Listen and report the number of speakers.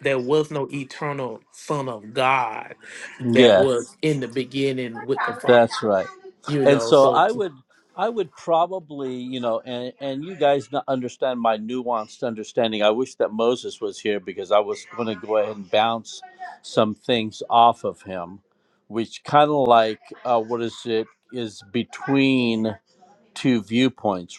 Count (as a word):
two